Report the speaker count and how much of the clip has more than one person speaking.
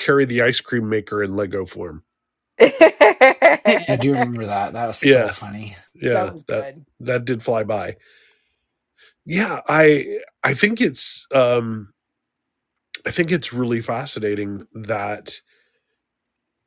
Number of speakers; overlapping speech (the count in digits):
3, about 5%